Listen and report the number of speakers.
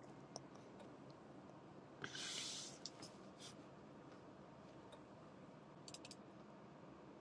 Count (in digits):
0